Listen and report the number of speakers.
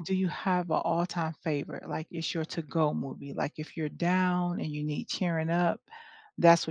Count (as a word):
one